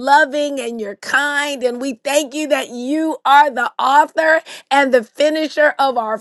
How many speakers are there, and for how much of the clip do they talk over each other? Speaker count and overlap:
one, no overlap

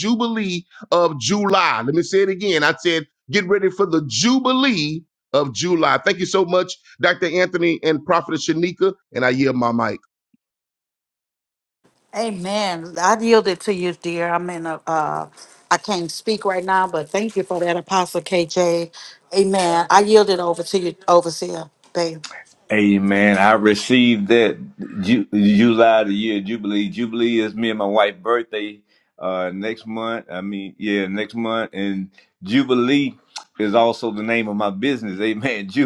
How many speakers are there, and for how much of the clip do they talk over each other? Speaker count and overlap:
three, no overlap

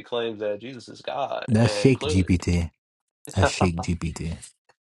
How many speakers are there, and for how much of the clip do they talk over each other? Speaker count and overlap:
two, about 18%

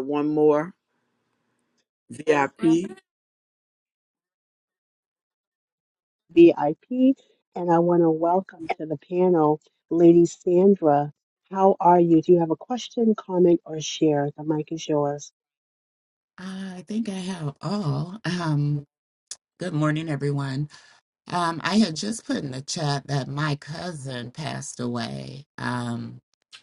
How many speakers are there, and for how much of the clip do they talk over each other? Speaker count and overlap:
three, no overlap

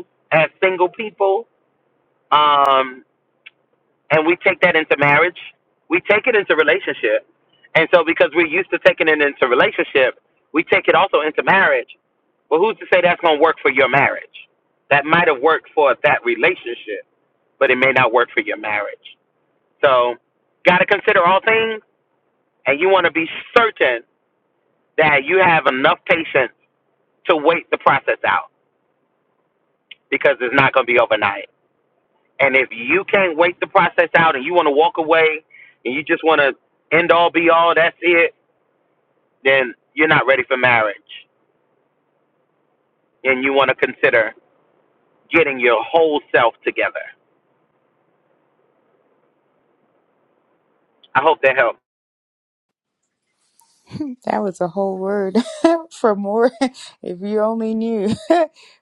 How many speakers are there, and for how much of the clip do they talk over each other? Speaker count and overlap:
two, no overlap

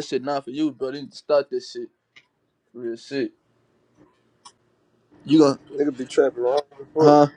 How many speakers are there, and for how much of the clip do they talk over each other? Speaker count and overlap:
two, about 3%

